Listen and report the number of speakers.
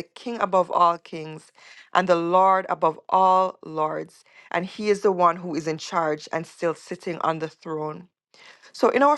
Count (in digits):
1